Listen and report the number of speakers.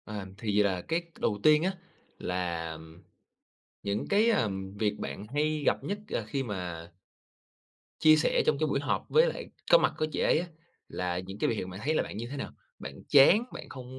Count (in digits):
1